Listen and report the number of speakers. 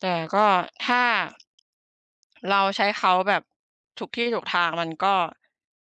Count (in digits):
1